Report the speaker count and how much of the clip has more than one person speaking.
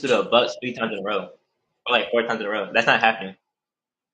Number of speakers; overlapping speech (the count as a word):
one, no overlap